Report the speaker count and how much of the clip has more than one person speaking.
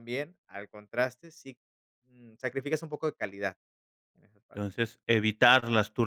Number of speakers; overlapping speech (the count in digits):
2, under 1%